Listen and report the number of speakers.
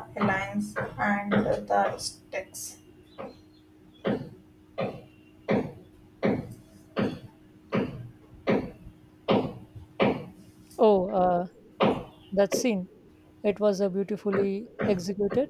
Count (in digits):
2